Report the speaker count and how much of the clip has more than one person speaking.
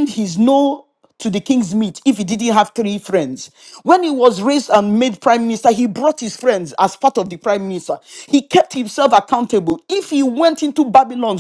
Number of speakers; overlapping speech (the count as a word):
one, no overlap